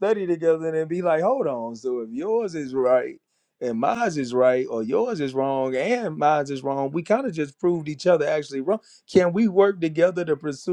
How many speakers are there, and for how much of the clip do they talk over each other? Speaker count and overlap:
one, no overlap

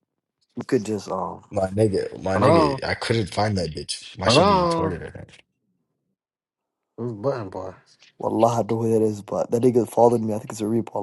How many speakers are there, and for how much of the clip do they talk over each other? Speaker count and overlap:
three, about 10%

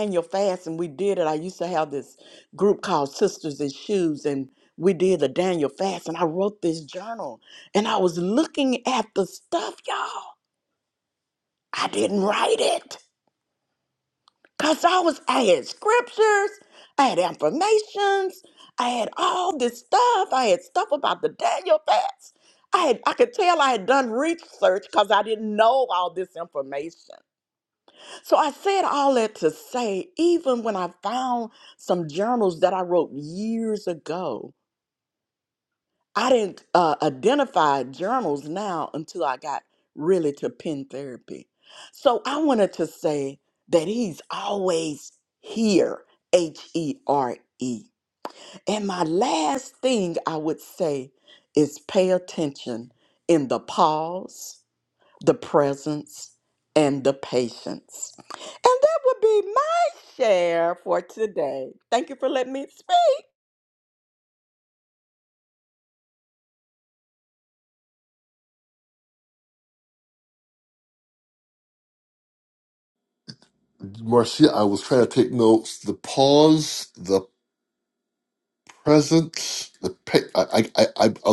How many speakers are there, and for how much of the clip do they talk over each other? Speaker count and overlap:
two, no overlap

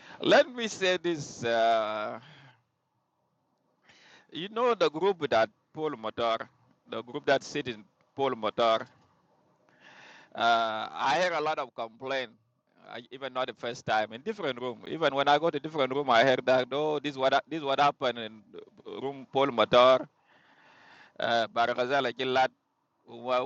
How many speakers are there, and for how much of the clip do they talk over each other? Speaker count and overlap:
one, no overlap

